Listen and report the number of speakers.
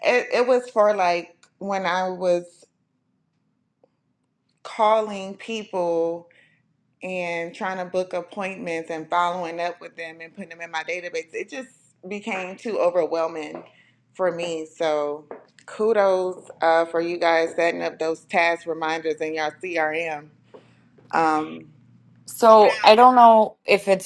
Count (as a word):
two